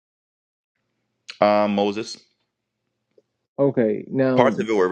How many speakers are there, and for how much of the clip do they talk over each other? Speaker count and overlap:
2, about 6%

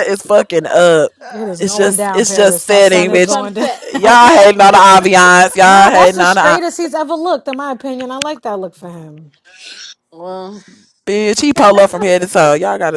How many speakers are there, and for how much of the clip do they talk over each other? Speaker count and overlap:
3, about 29%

